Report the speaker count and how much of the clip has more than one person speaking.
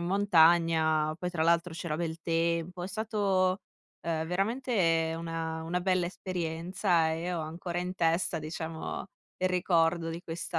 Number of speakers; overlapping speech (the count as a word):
one, no overlap